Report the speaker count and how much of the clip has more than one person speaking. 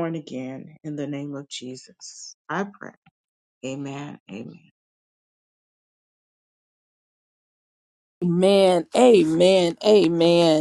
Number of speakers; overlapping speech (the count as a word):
two, no overlap